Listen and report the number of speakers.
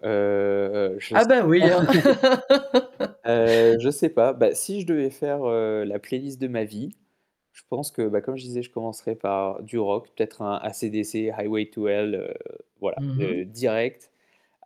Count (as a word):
two